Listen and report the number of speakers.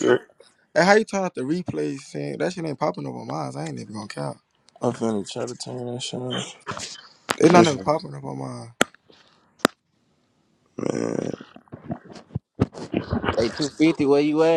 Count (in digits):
4